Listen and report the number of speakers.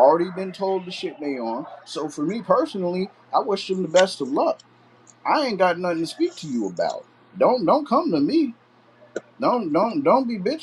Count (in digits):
1